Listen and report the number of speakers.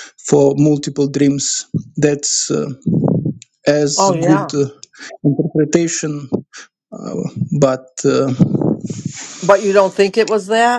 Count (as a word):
two